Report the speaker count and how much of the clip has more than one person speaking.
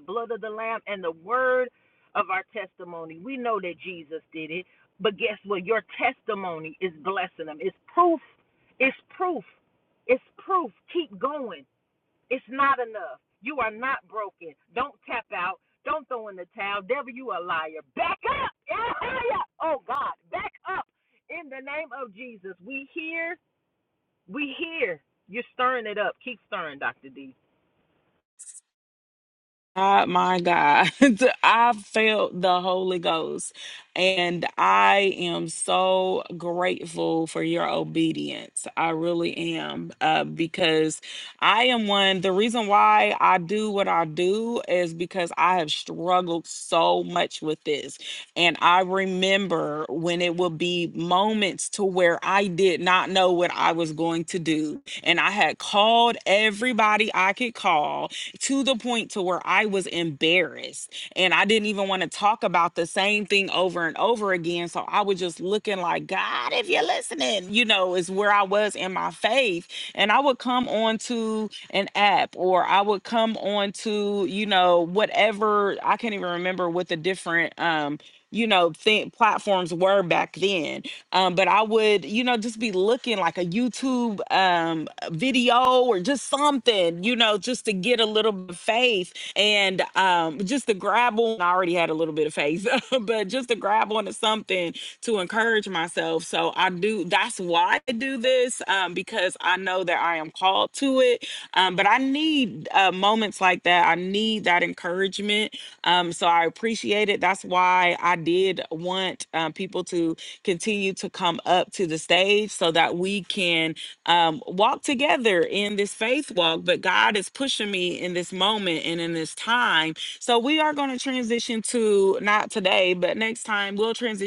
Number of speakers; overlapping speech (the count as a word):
two, no overlap